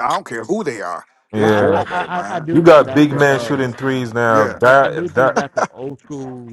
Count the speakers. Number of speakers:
3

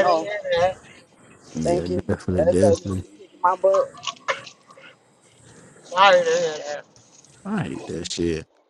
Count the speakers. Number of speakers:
3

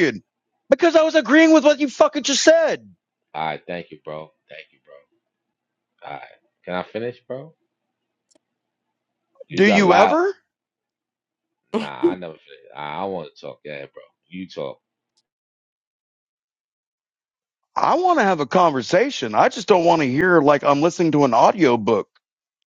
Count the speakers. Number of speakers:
2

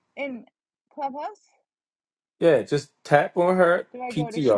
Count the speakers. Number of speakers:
2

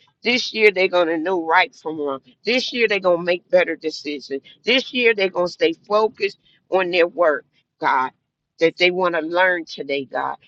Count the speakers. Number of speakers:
1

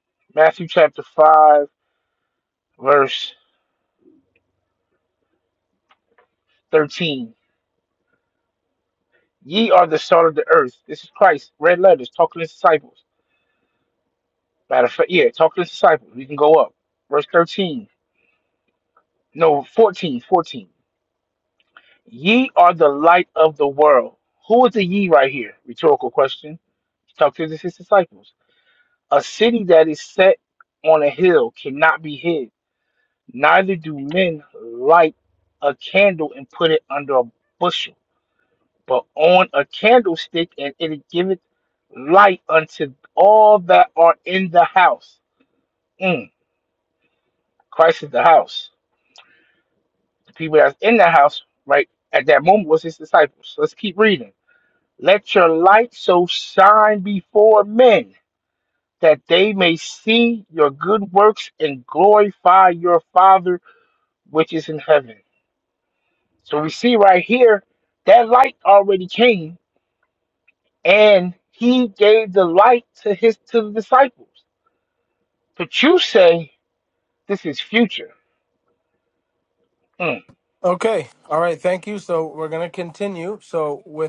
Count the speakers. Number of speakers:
2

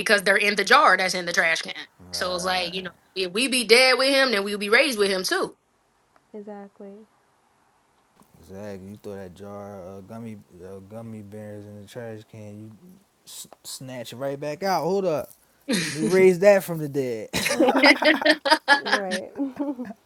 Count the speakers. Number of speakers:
3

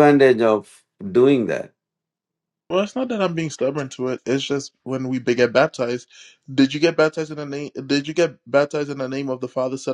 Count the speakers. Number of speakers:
2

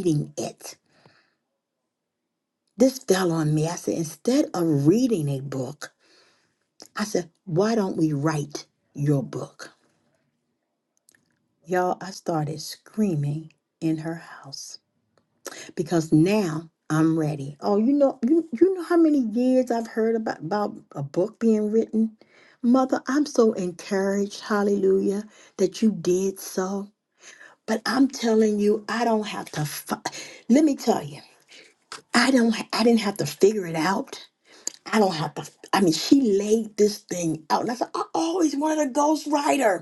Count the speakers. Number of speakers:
1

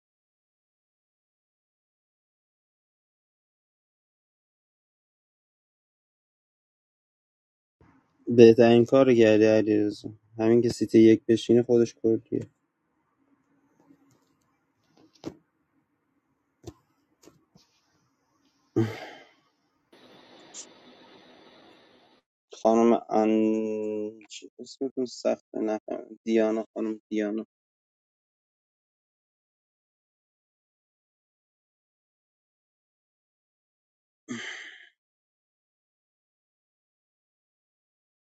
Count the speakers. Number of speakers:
1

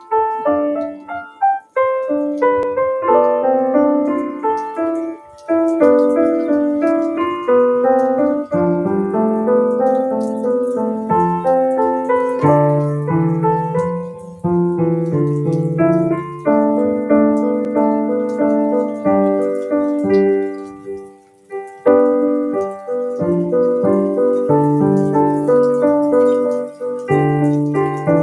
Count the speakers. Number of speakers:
0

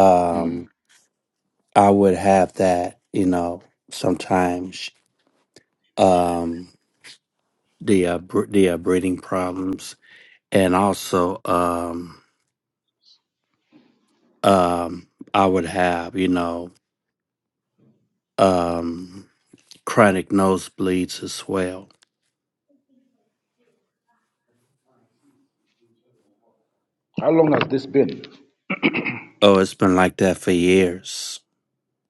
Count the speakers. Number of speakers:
2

